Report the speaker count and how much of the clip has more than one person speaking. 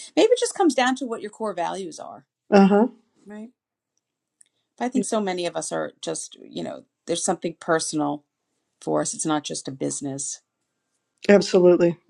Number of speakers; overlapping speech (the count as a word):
two, about 1%